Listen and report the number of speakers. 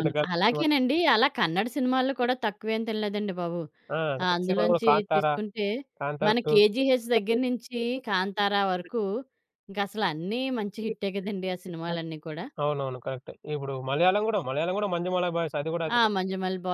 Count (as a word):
two